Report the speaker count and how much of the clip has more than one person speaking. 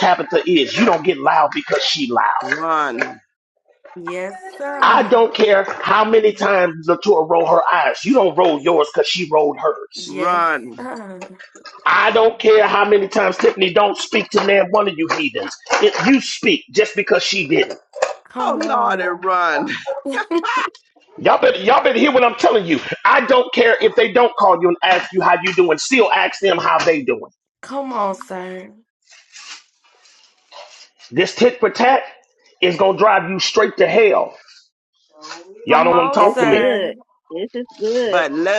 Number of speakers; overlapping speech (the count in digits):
4, about 8%